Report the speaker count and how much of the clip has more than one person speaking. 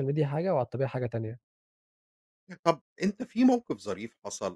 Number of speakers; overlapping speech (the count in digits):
2, no overlap